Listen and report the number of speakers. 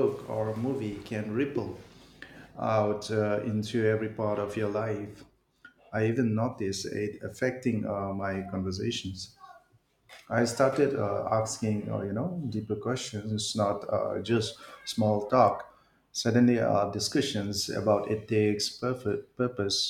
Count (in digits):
1